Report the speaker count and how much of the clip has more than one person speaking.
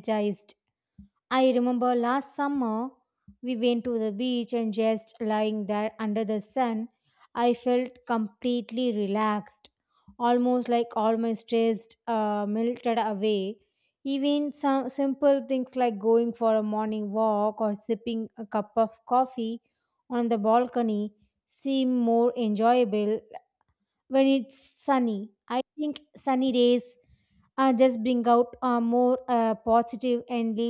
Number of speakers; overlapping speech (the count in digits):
1, no overlap